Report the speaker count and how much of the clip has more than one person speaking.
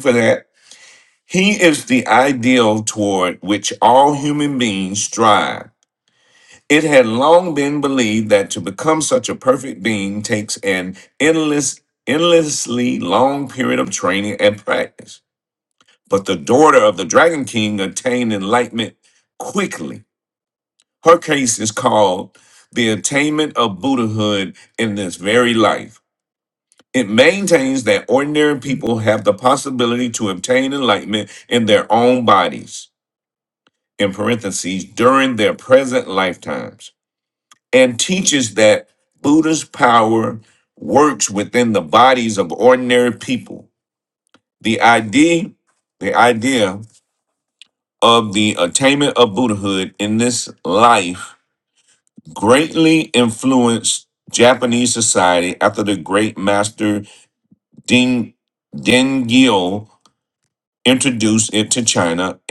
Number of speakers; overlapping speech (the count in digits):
1, no overlap